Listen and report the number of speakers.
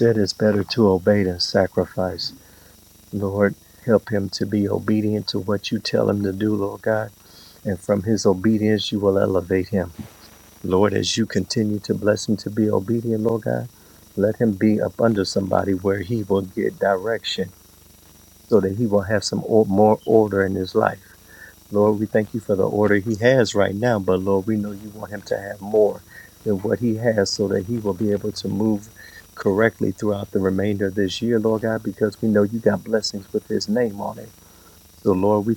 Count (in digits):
1